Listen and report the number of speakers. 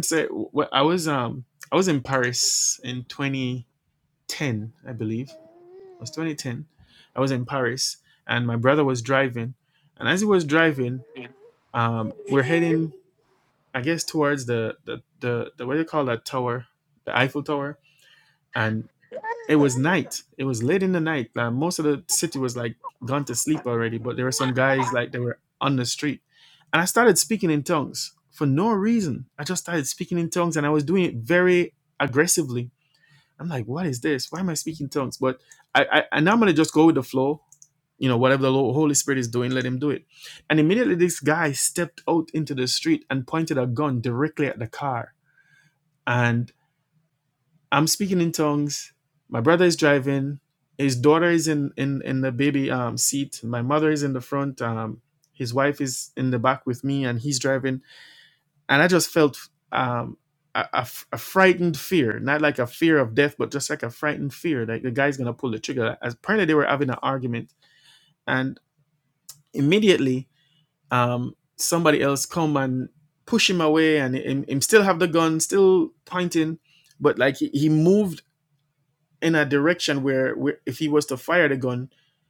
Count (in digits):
1